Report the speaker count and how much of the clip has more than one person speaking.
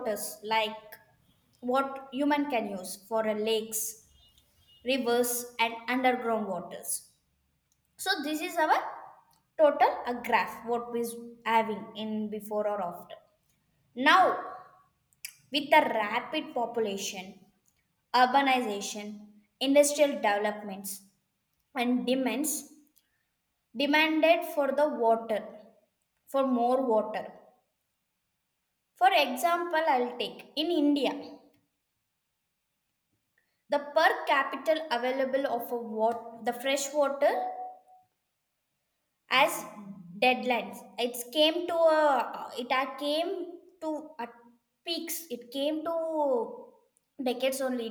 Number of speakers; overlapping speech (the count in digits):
1, no overlap